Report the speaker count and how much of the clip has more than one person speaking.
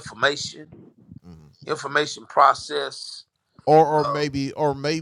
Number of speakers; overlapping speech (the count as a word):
two, about 6%